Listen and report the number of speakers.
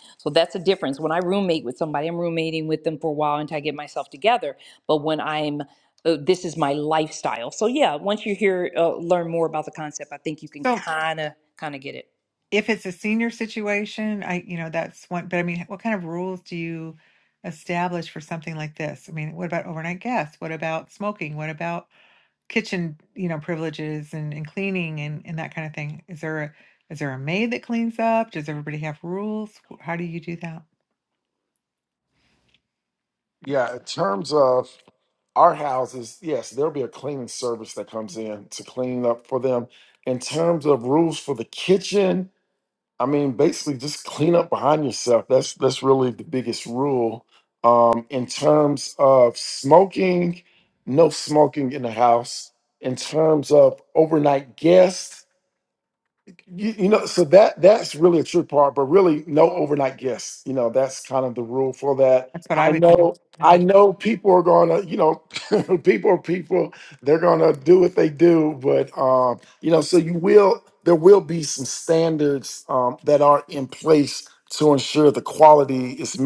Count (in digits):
3